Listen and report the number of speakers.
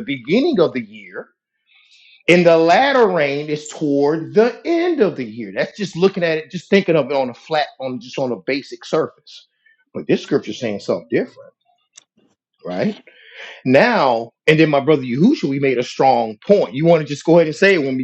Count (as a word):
one